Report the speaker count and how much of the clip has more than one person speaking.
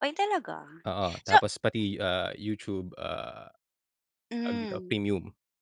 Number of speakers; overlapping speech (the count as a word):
two, about 14%